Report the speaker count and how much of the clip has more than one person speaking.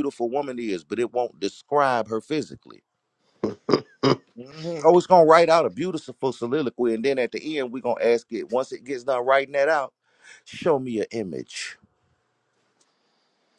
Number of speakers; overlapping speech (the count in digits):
1, no overlap